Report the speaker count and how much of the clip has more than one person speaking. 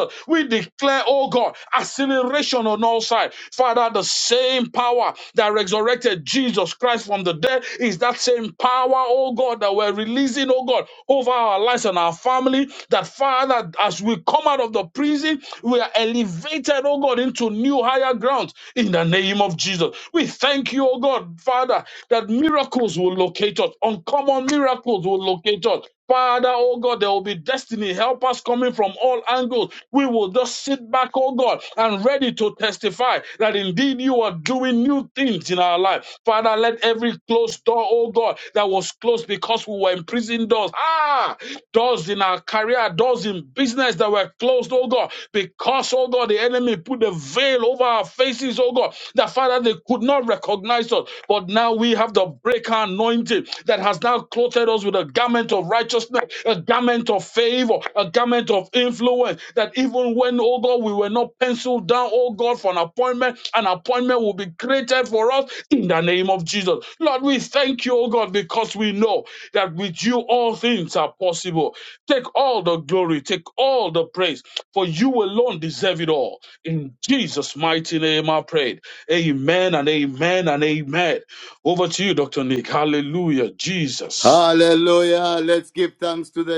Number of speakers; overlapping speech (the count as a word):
two, under 1%